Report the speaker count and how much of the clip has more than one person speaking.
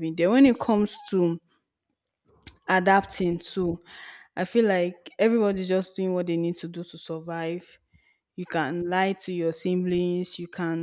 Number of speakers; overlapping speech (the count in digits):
1, no overlap